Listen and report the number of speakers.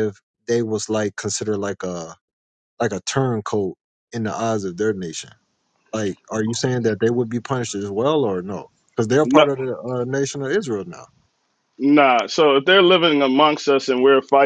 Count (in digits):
2